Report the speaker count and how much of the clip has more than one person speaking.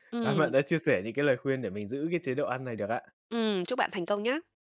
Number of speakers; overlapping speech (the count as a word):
two, about 6%